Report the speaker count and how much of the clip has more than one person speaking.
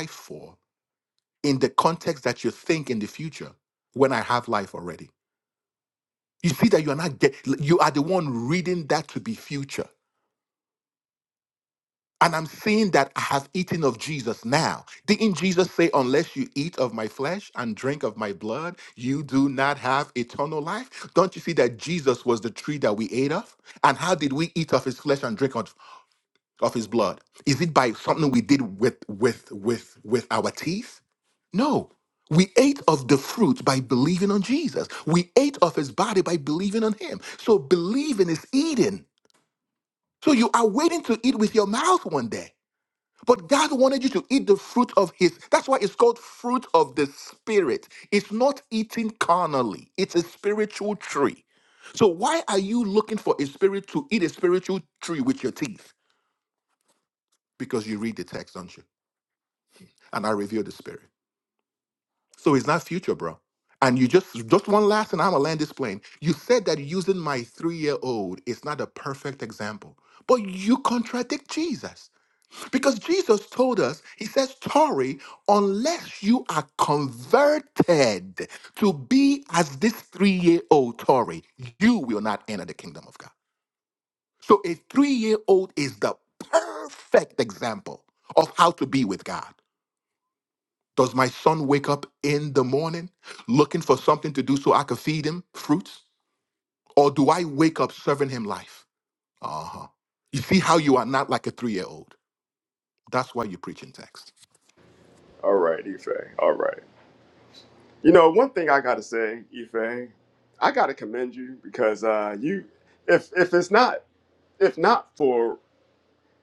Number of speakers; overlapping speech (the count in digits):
2, no overlap